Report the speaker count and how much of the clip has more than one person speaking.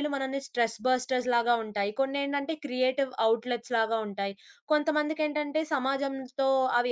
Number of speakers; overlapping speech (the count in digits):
1, no overlap